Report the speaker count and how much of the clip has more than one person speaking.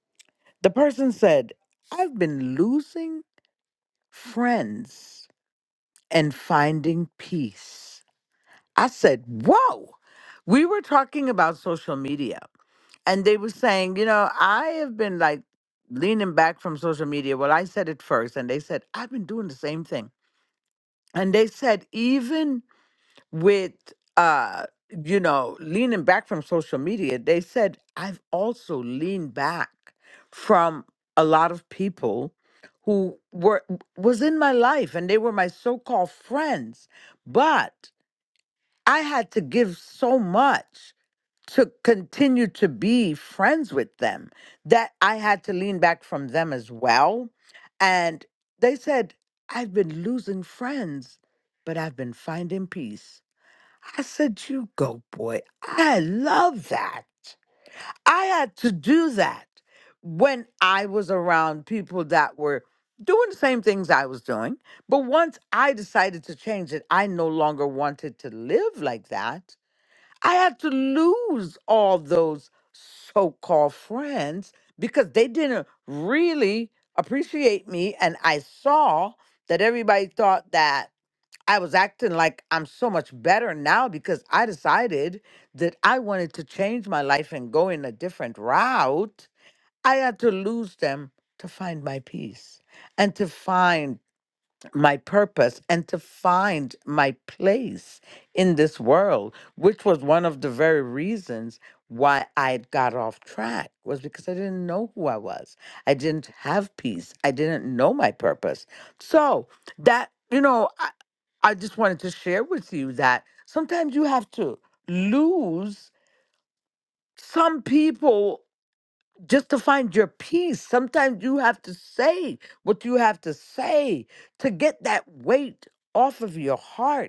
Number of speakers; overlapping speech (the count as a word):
one, no overlap